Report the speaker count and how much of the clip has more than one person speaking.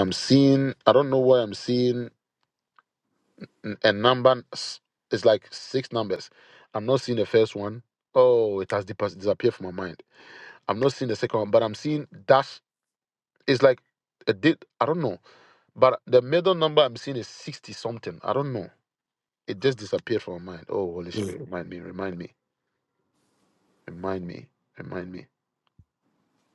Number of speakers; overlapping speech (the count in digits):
1, no overlap